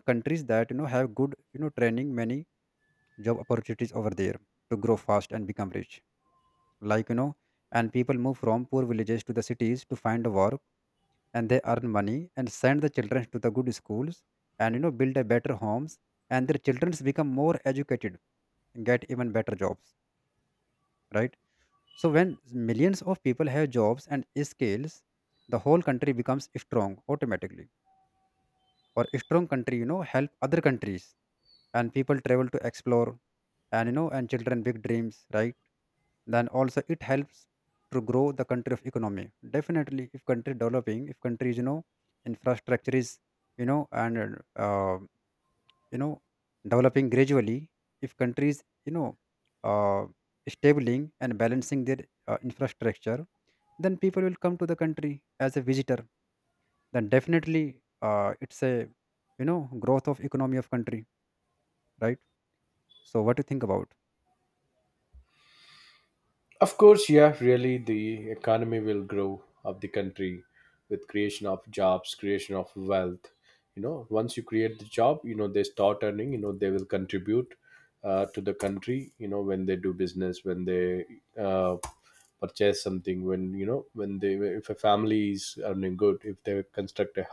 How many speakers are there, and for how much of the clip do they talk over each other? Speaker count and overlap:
2, no overlap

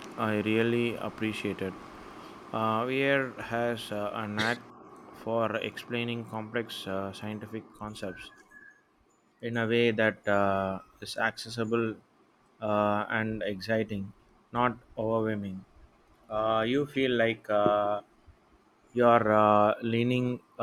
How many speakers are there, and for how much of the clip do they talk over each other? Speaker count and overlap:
1, no overlap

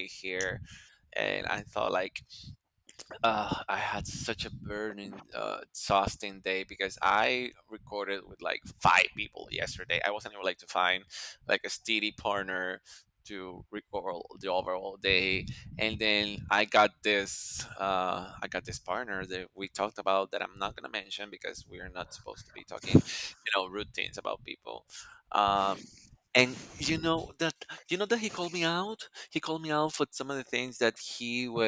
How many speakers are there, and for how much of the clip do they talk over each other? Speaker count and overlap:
1, no overlap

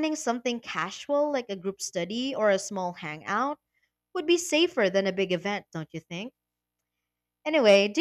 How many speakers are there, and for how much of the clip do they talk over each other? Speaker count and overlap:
1, no overlap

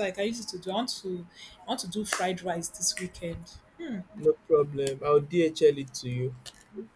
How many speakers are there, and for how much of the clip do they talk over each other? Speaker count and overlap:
2, no overlap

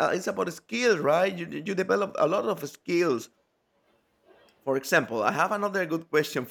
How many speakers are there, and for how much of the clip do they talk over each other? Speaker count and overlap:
1, no overlap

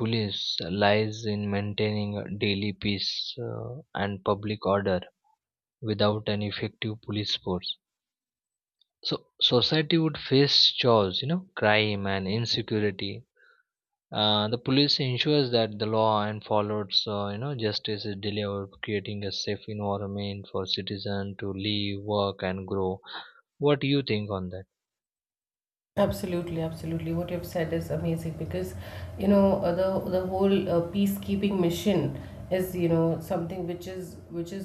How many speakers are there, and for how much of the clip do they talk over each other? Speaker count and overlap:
2, no overlap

